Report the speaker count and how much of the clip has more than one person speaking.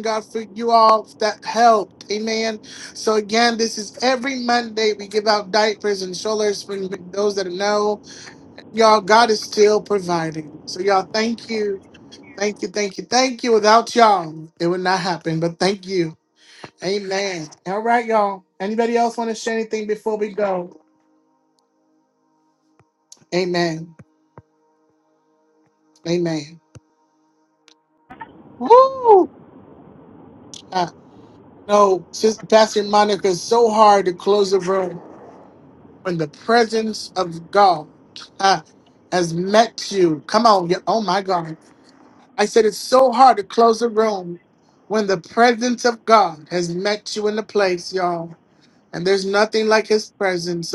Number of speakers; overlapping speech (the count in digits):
1, no overlap